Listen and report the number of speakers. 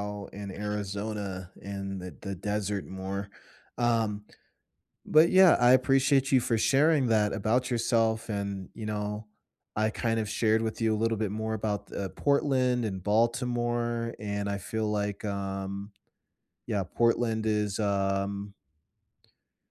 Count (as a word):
one